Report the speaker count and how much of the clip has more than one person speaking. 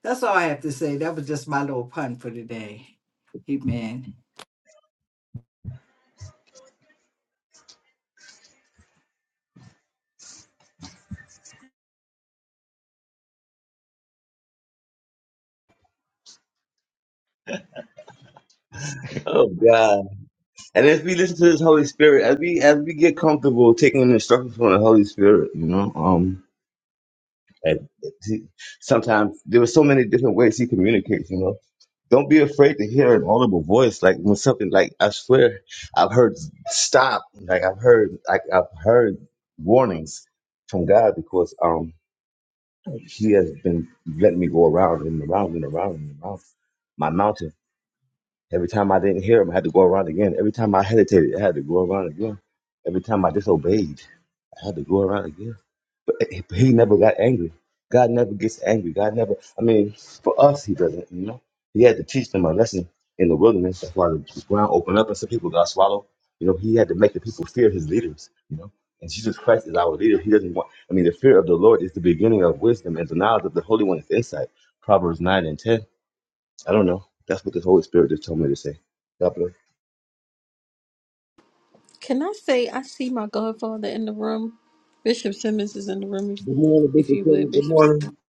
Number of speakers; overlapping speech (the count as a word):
three, about 1%